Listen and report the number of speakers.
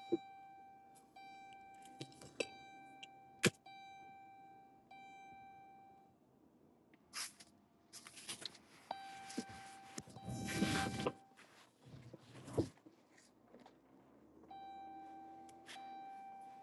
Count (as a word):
zero